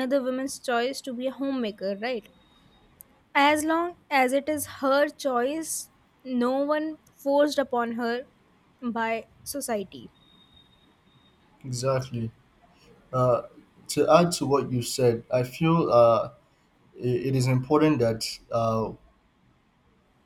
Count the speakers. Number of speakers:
2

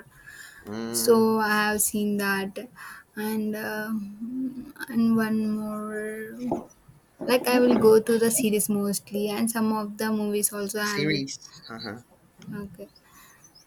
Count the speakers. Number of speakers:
2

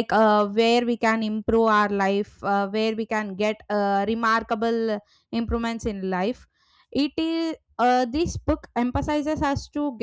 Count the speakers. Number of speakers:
1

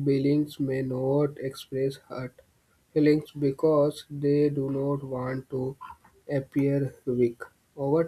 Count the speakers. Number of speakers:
1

